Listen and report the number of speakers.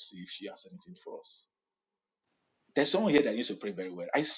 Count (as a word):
one